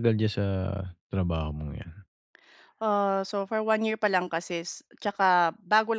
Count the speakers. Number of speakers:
two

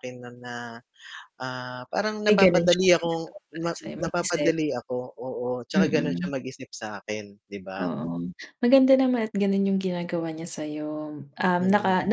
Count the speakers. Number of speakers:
two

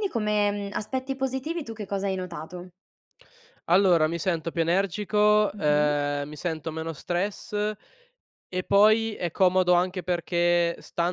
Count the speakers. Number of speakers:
two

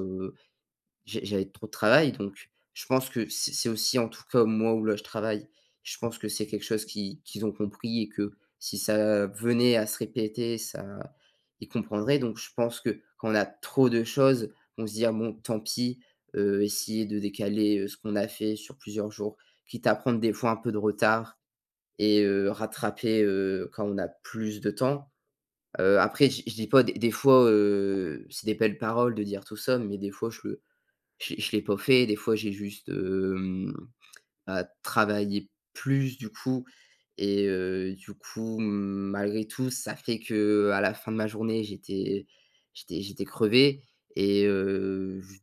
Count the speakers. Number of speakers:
one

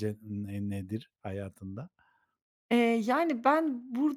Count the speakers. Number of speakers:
two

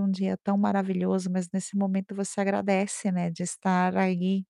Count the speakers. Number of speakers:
one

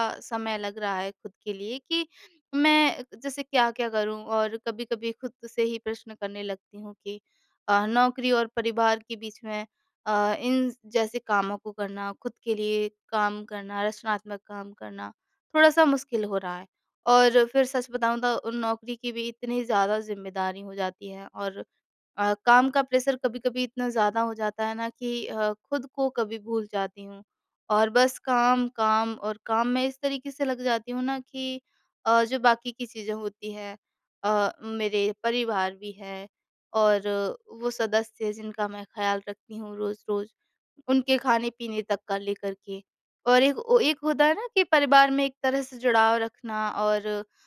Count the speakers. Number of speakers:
one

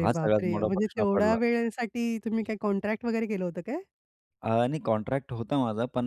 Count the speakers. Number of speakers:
two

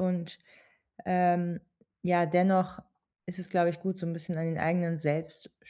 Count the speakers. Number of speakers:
one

